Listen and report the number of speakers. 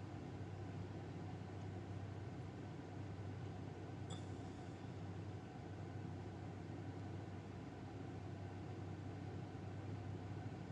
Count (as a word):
zero